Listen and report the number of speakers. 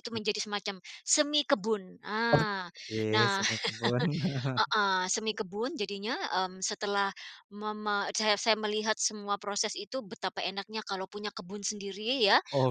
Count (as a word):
two